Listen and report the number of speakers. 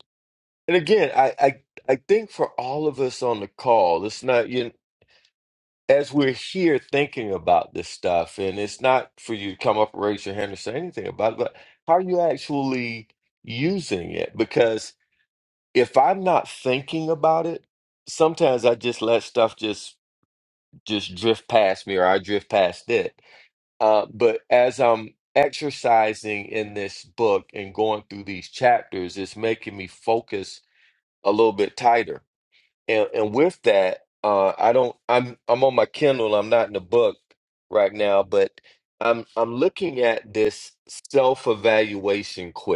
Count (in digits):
1